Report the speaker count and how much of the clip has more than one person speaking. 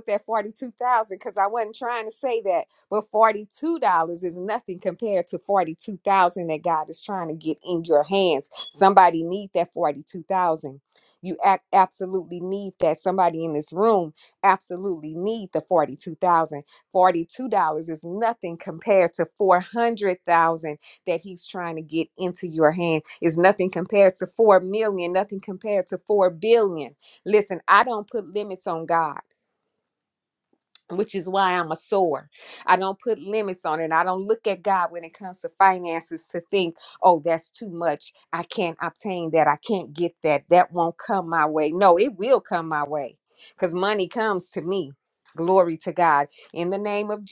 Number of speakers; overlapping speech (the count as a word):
one, no overlap